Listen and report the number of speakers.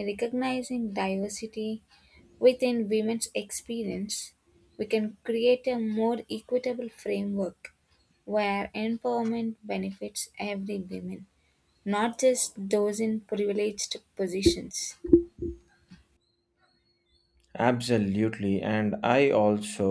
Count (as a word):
two